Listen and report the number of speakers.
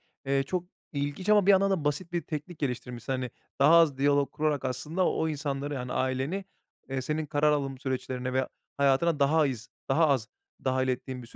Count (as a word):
one